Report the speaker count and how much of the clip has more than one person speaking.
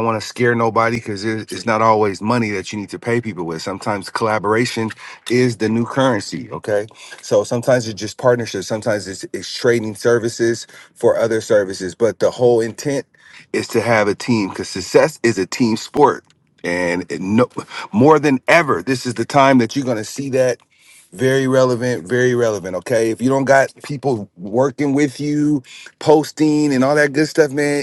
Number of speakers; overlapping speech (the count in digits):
1, no overlap